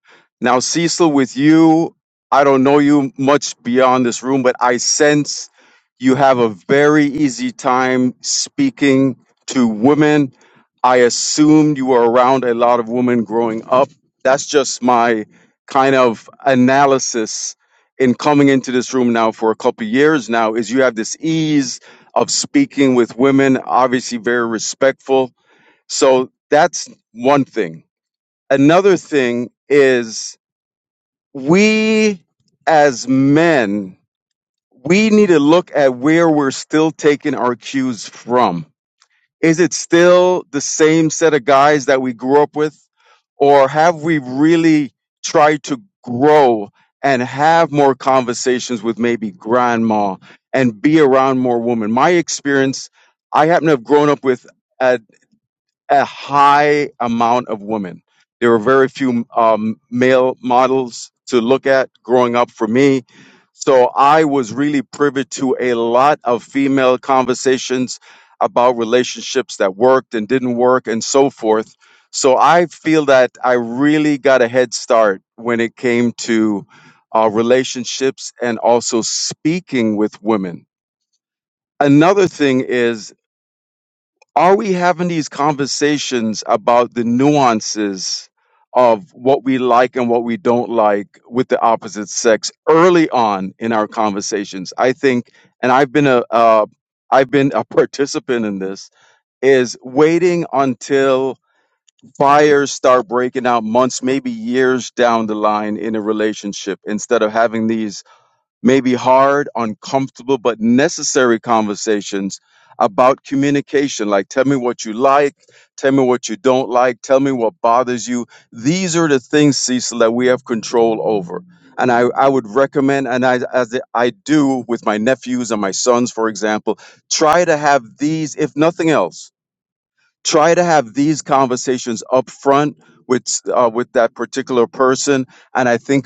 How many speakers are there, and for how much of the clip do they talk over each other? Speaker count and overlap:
one, no overlap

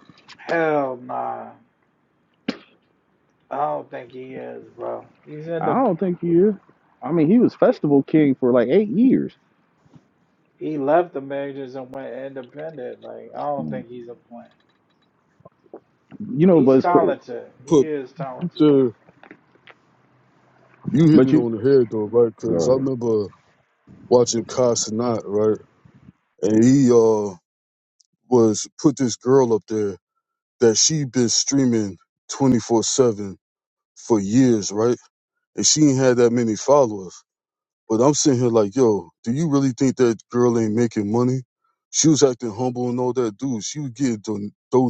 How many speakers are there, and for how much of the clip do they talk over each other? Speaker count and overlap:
three, about 5%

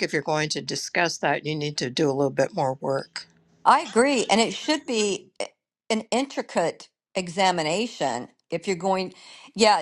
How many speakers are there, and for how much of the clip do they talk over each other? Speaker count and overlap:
two, no overlap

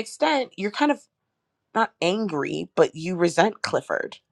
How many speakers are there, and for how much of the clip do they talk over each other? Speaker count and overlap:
one, no overlap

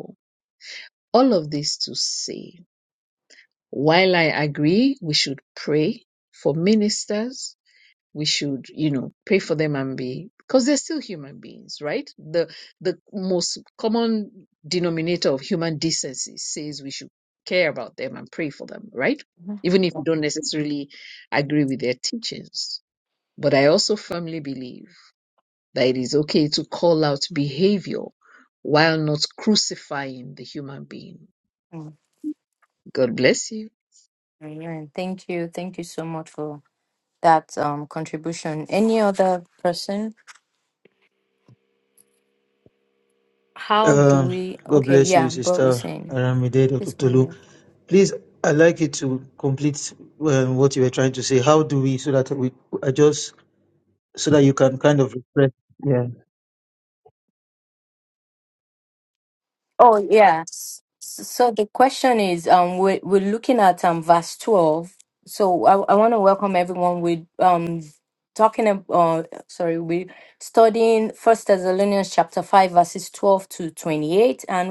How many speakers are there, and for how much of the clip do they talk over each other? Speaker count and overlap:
three, about 3%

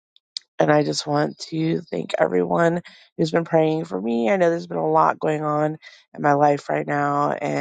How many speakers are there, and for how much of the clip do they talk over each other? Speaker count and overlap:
one, no overlap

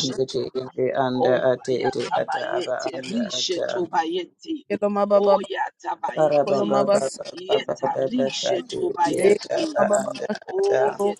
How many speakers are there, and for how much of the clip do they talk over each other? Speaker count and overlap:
three, about 52%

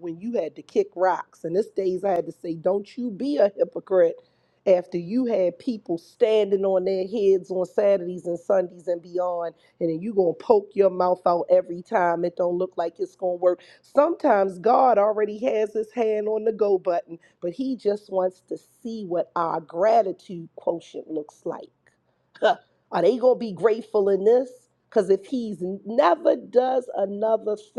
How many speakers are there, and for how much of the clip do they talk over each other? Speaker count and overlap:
one, no overlap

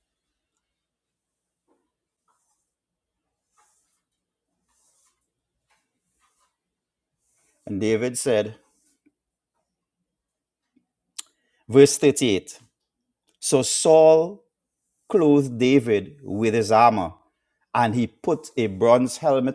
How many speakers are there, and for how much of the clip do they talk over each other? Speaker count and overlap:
one, no overlap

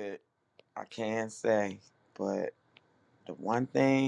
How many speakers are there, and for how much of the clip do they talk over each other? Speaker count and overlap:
one, no overlap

